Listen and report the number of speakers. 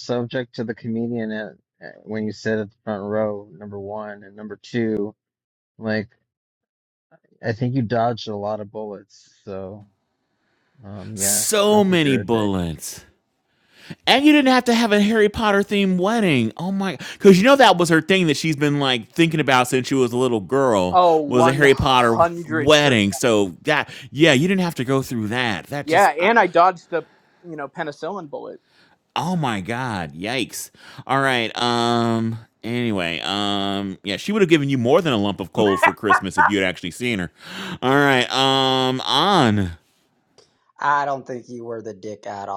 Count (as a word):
four